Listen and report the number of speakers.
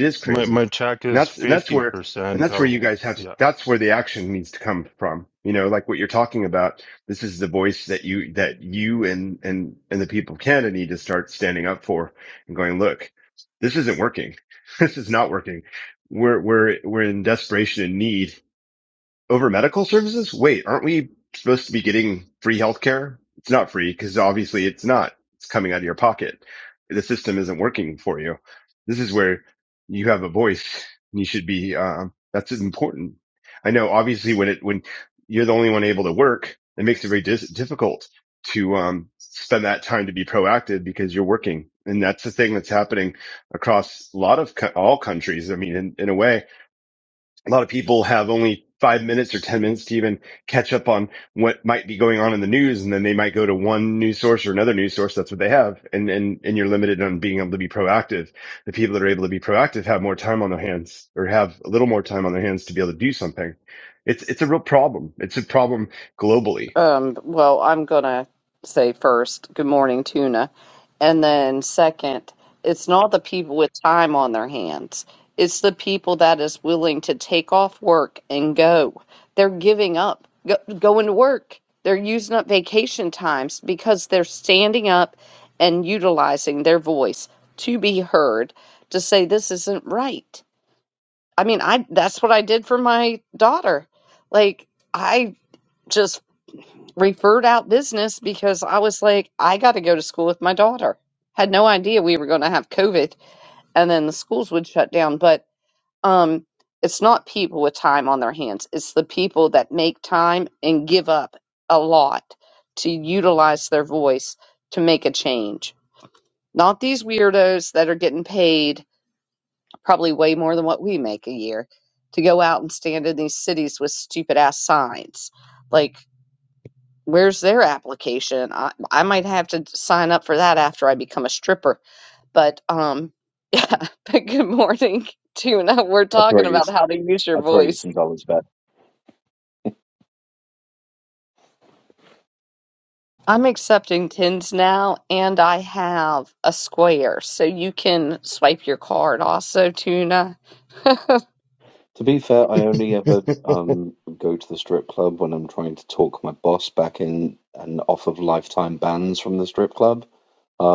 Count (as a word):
four